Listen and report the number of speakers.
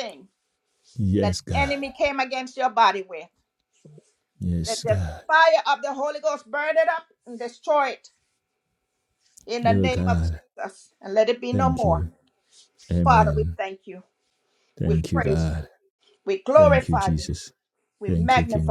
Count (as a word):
two